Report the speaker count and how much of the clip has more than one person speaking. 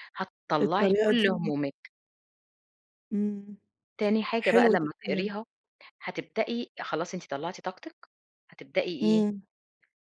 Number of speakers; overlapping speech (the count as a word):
two, about 16%